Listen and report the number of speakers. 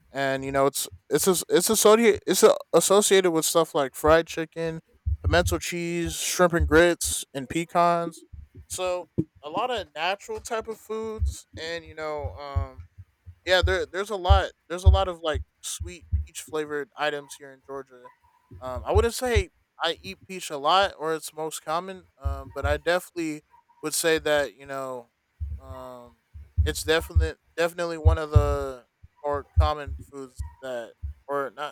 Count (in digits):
1